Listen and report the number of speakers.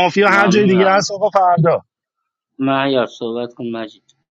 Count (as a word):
two